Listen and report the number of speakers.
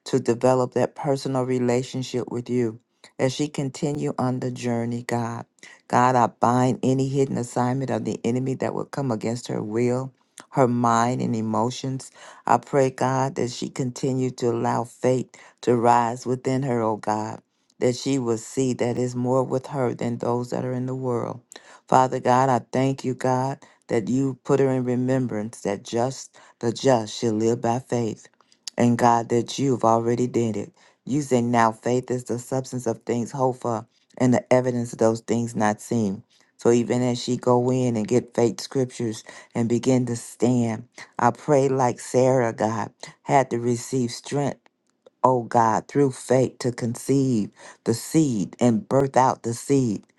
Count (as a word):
one